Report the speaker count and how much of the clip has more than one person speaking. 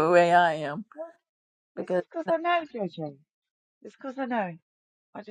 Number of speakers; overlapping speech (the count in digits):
2, about 5%